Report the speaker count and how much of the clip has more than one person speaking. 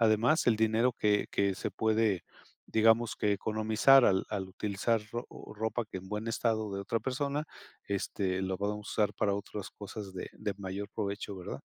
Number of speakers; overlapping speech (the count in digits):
1, no overlap